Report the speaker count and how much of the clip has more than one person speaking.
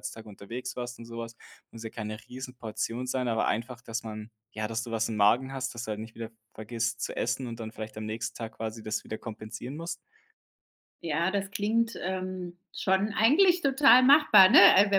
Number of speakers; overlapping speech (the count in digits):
2, no overlap